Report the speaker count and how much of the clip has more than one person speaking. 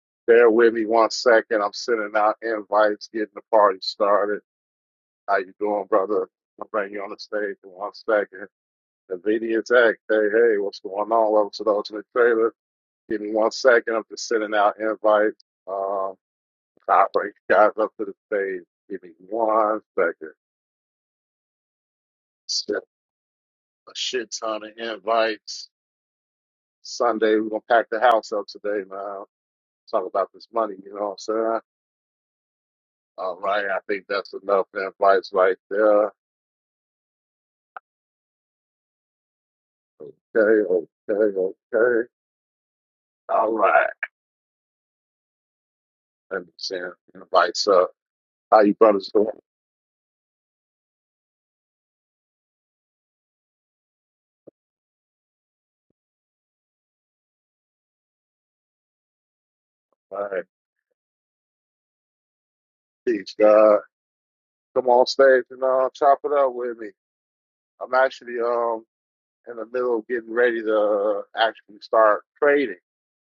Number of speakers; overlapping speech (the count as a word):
one, no overlap